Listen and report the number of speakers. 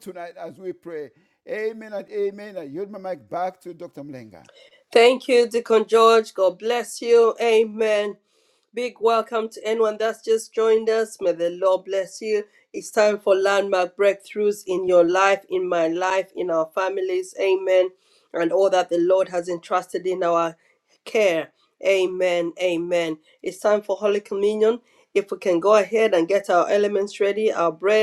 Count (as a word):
two